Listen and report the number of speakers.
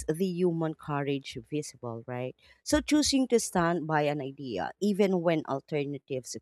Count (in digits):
1